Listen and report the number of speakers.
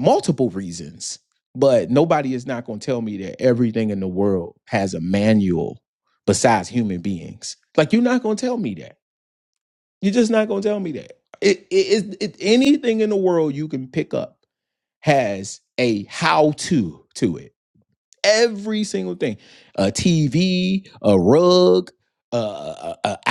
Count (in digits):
1